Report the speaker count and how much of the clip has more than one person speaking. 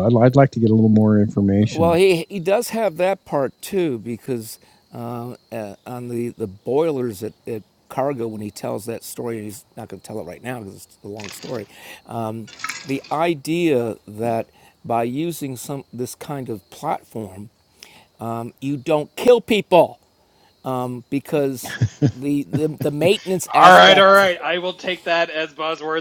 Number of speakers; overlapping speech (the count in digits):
3, about 4%